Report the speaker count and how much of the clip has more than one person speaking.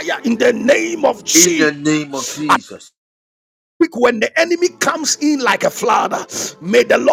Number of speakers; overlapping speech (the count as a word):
two, about 5%